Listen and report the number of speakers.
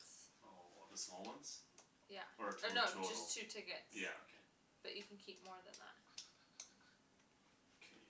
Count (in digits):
2